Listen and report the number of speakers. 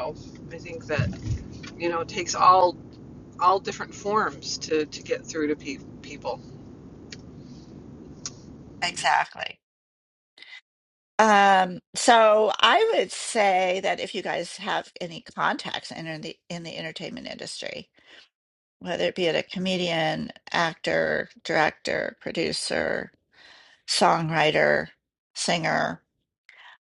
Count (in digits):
2